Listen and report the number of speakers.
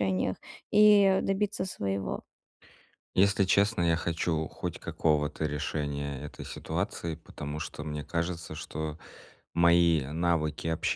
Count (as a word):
two